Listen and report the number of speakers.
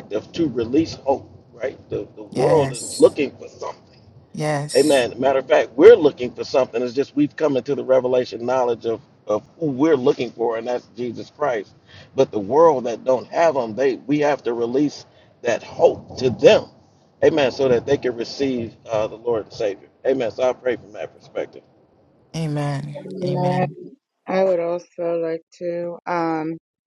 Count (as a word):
three